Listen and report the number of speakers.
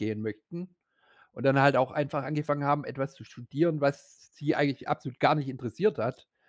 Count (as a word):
one